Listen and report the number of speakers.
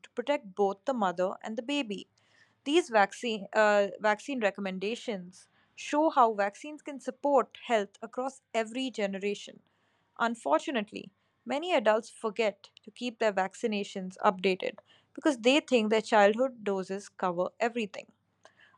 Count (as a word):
one